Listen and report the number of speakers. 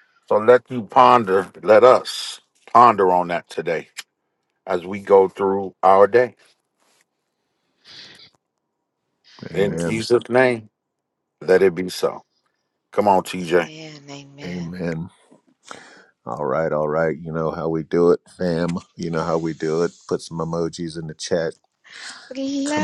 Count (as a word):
three